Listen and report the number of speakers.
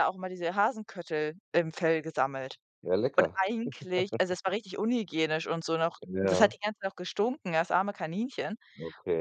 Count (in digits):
2